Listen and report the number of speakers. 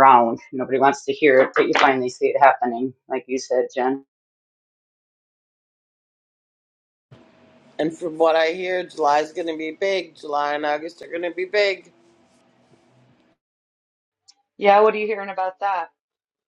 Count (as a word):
three